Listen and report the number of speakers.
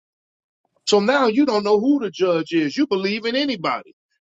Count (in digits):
1